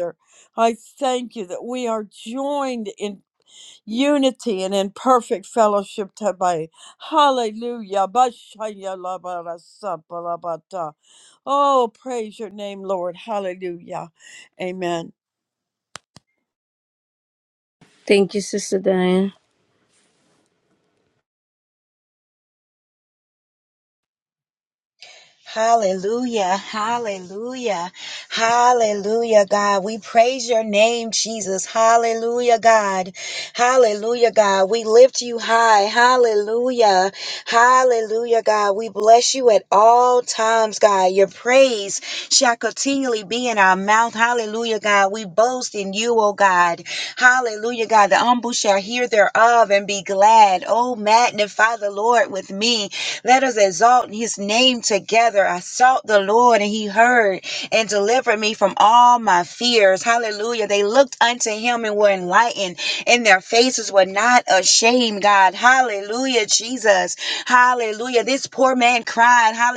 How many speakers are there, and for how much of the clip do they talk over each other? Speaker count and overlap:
3, no overlap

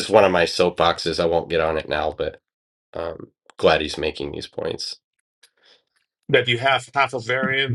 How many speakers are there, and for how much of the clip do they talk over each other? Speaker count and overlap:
2, no overlap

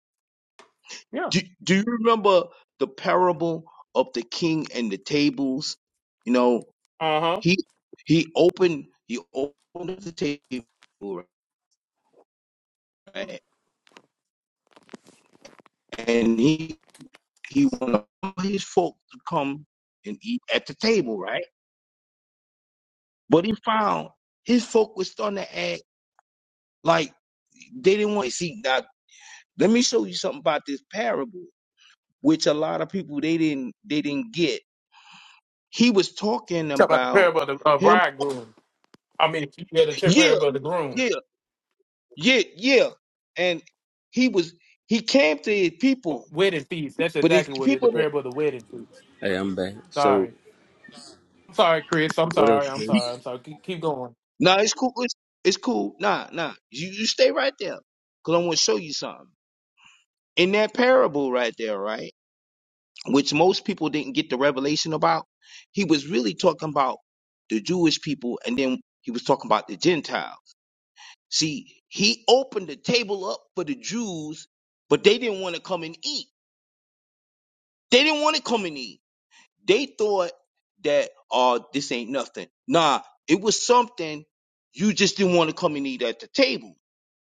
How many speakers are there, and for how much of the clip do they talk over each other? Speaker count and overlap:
3, about 4%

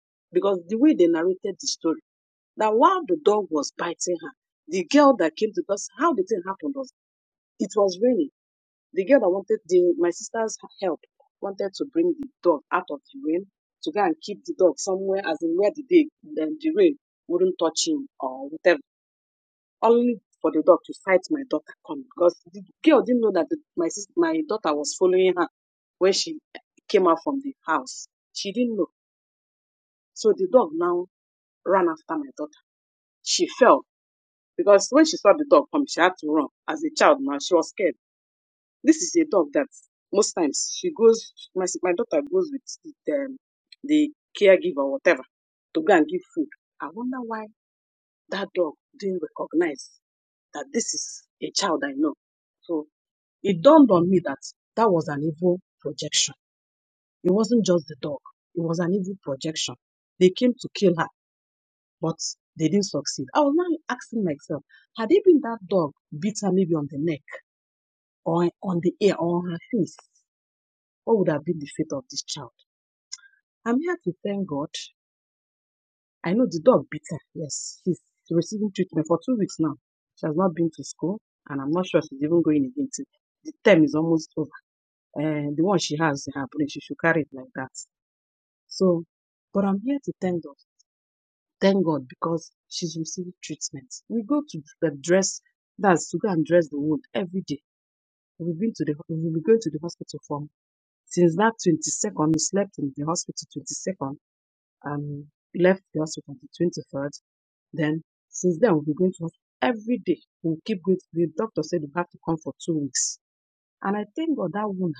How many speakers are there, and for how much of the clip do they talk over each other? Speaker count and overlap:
1, no overlap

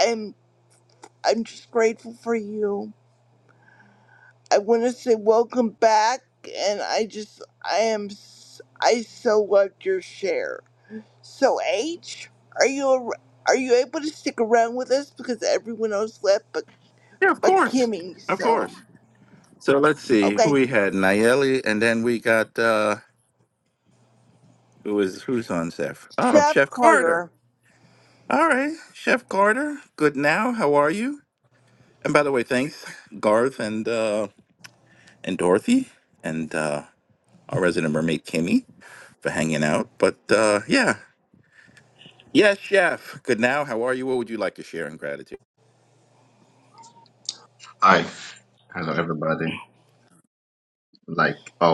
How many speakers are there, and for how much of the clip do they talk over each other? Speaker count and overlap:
3, about 4%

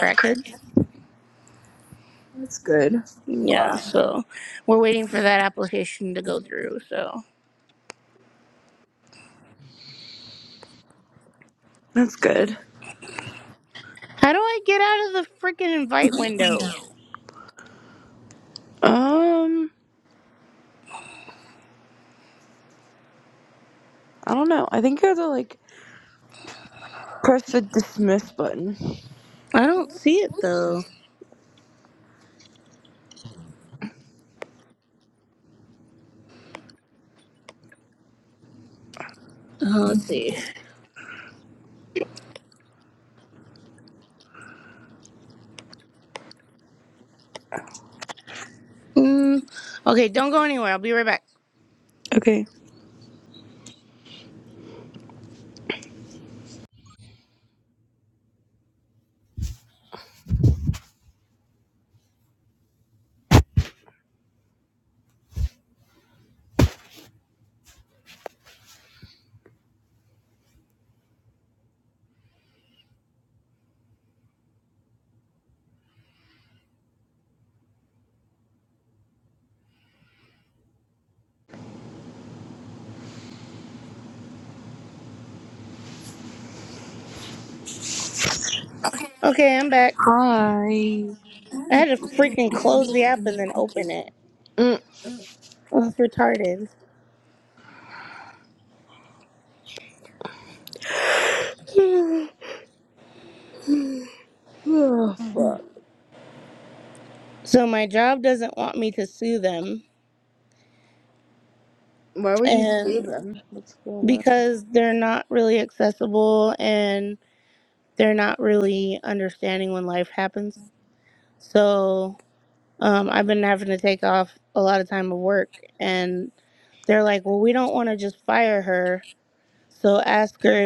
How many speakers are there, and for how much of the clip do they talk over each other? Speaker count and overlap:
2, about 1%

